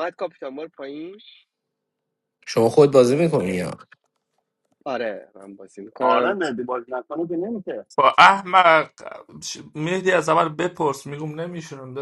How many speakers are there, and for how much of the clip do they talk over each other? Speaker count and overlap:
four, about 9%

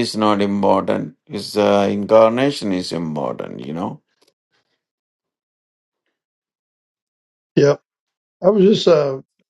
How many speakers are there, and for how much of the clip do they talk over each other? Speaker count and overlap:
two, no overlap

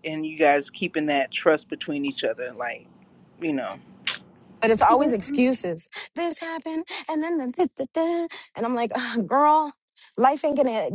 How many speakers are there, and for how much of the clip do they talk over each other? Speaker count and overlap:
two, no overlap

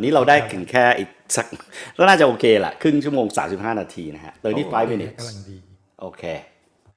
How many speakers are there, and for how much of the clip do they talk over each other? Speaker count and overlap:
one, no overlap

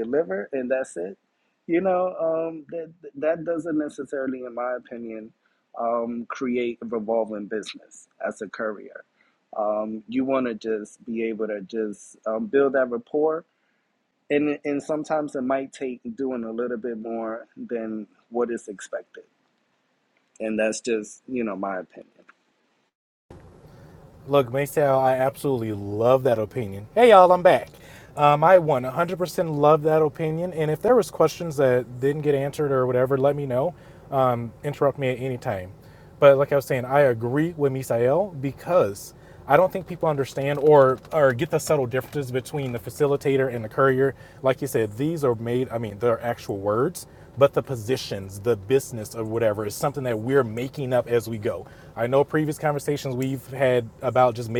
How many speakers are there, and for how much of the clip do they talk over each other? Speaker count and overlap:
two, no overlap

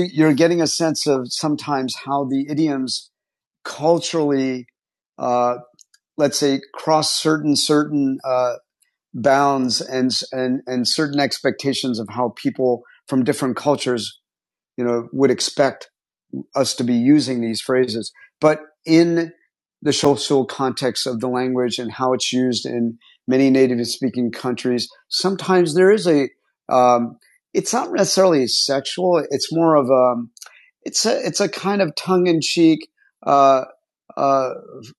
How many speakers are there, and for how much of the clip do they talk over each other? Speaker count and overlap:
one, no overlap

